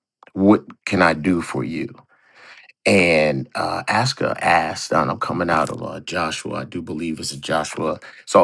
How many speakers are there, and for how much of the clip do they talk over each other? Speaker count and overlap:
1, no overlap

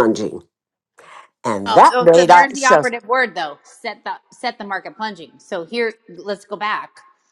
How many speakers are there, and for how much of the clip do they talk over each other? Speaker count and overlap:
2, about 16%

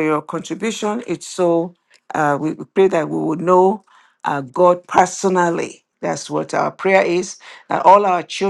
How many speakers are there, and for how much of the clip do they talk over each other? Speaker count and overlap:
1, no overlap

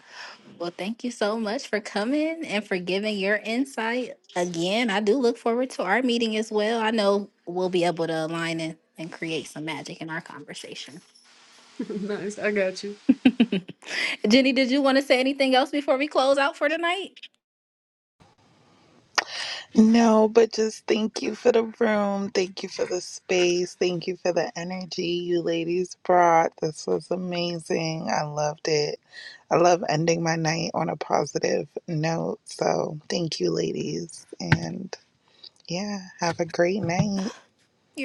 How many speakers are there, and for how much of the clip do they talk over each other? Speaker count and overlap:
3, no overlap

